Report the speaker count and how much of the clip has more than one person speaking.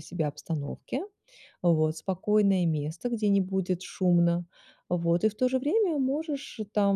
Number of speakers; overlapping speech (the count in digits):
1, no overlap